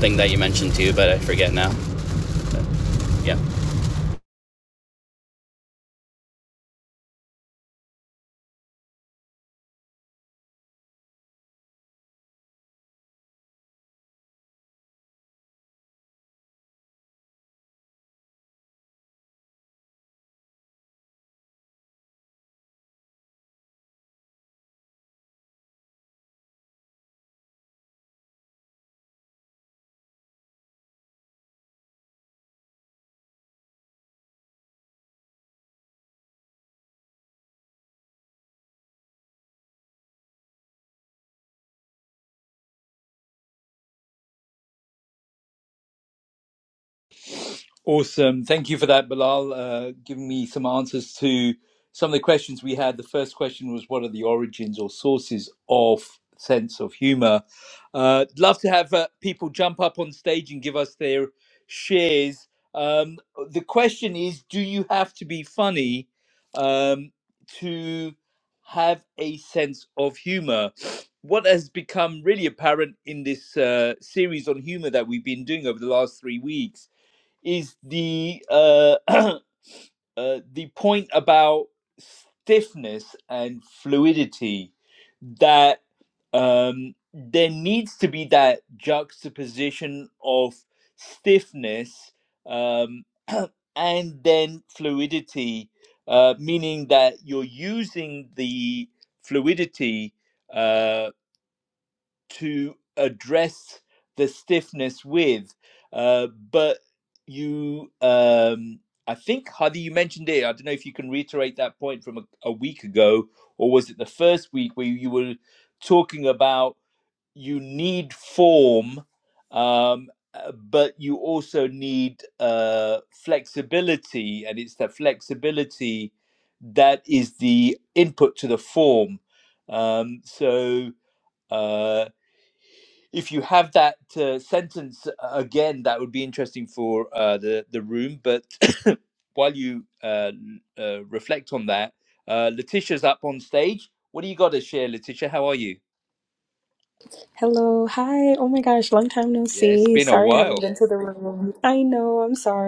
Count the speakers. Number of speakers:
three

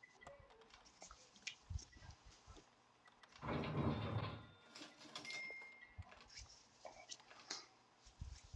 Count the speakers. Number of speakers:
zero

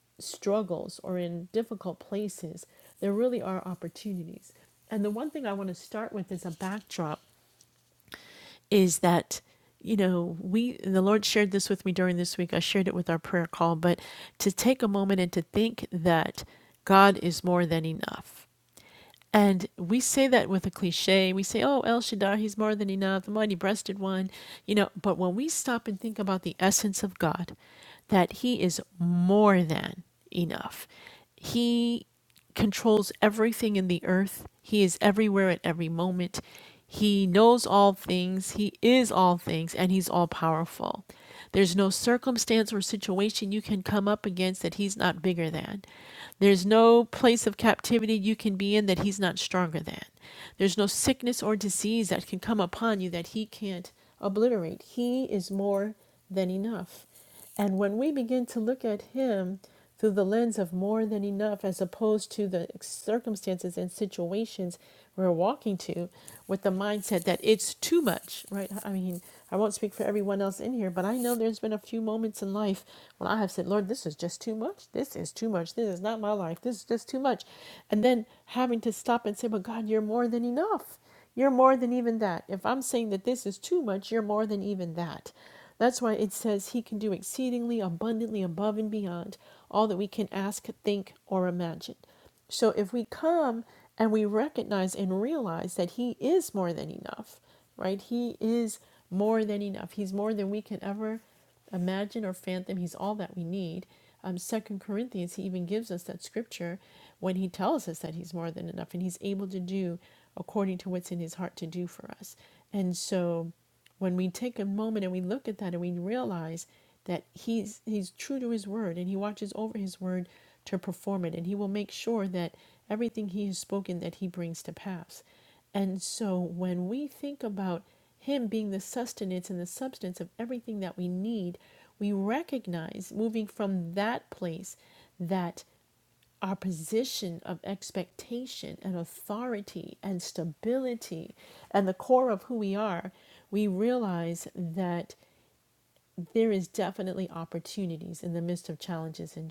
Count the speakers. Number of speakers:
one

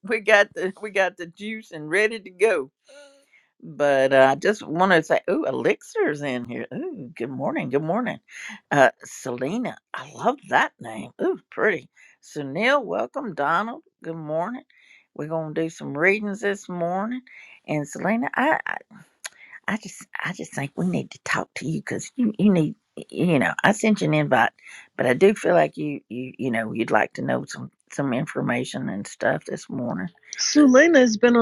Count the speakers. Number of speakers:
two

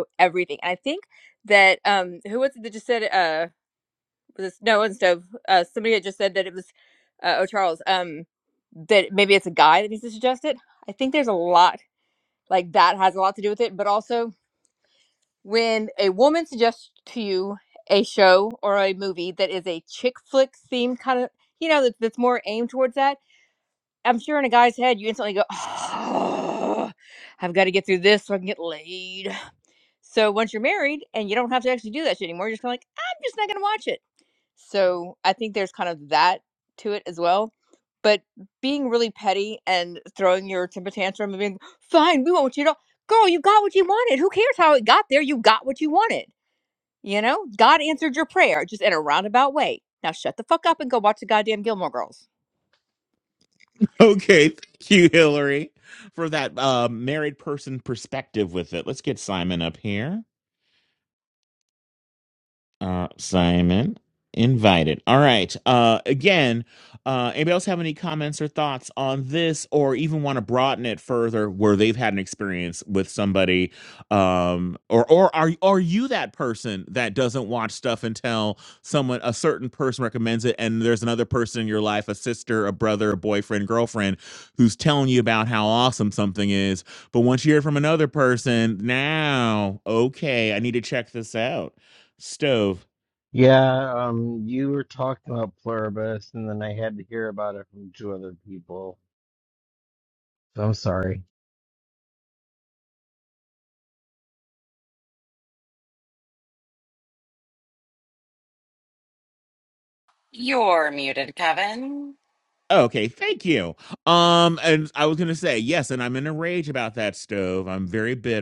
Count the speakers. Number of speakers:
four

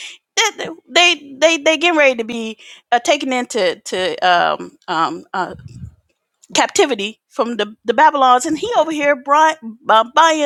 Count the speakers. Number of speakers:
one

